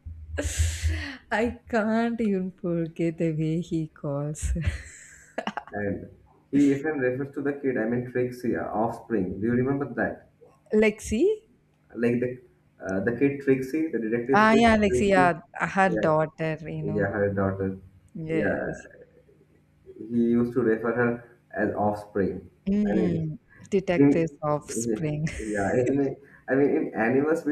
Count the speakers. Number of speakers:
2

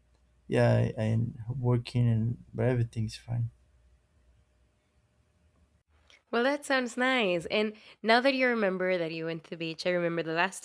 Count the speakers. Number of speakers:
2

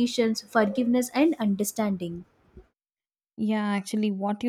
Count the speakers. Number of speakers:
2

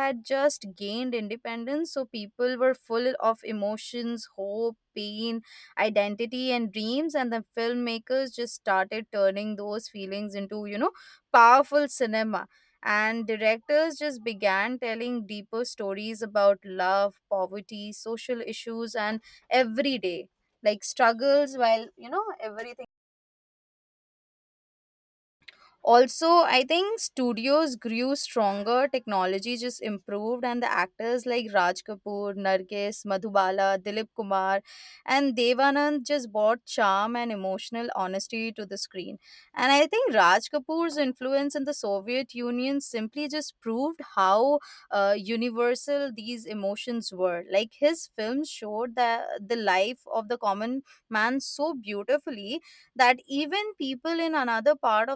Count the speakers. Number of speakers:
1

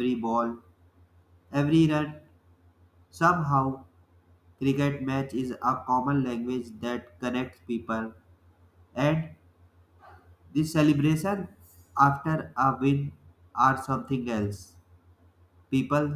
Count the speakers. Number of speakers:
1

